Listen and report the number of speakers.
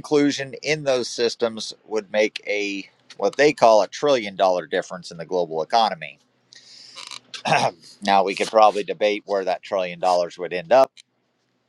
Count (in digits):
1